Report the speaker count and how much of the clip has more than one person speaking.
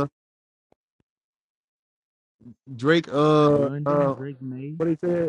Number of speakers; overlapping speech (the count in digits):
2, about 14%